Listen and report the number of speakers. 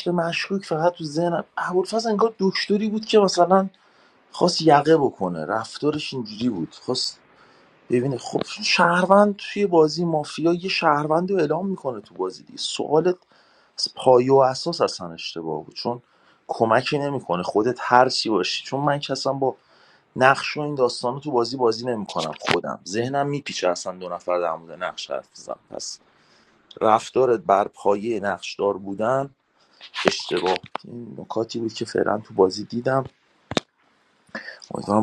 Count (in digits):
1